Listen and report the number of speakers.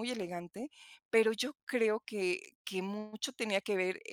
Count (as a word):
one